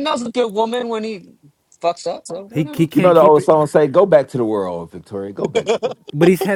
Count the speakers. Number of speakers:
3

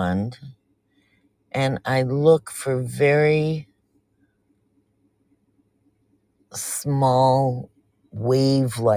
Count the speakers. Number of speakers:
1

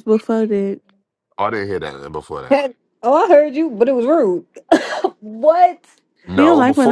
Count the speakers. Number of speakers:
3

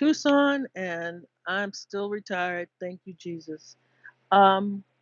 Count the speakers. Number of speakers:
1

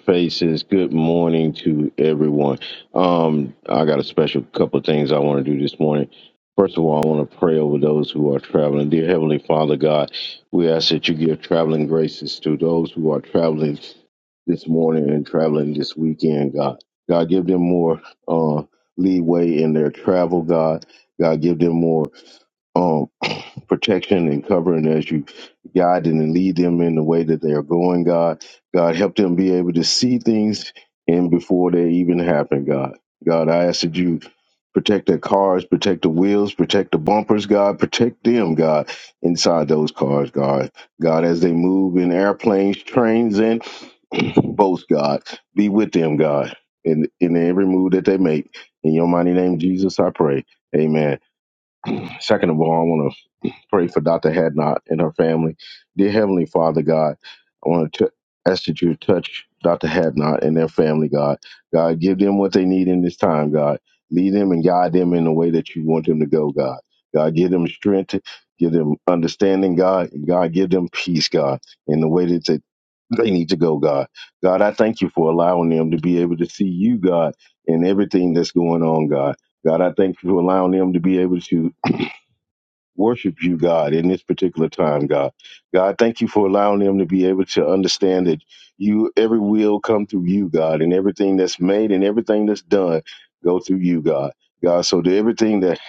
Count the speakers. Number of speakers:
1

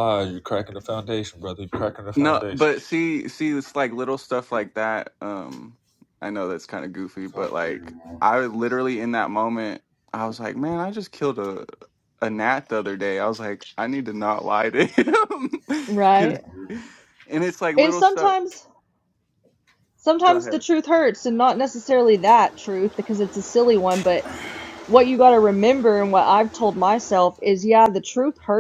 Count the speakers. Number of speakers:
3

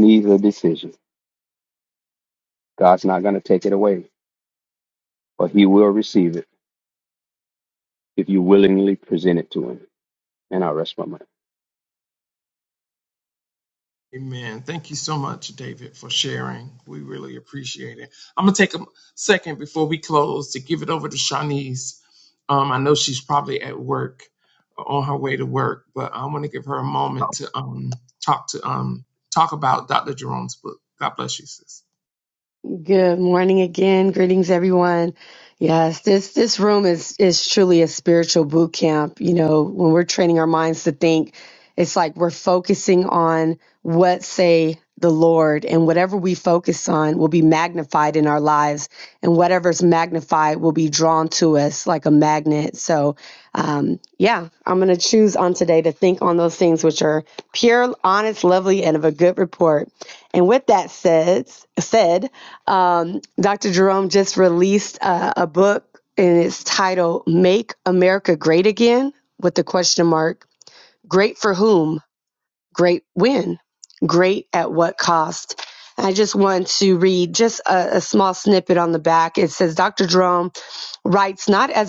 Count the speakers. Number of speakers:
3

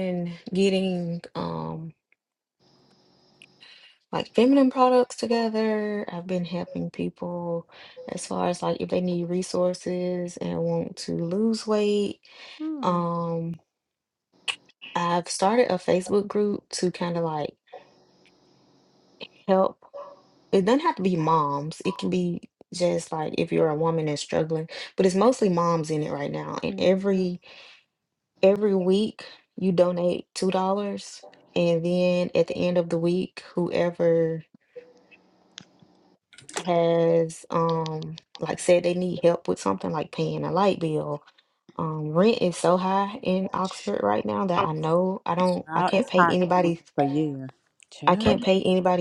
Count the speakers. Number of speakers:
2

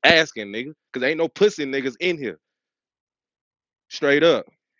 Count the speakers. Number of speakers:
1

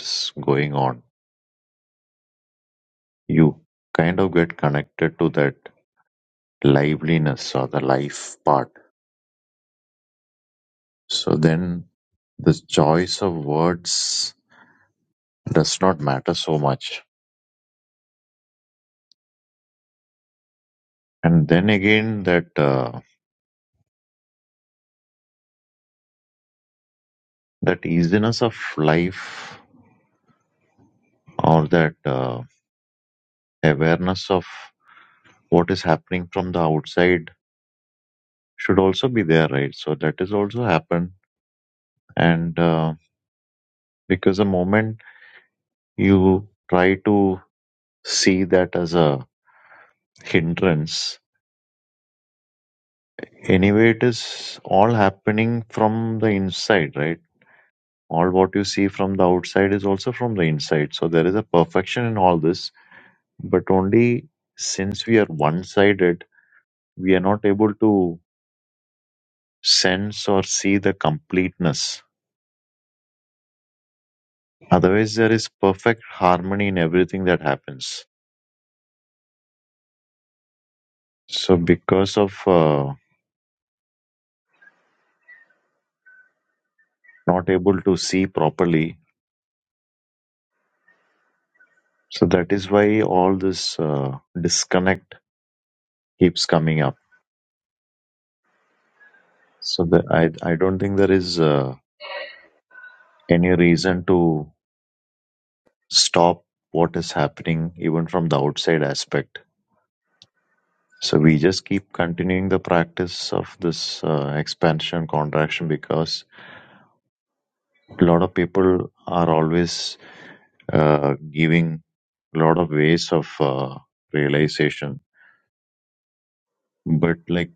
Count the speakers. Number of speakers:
1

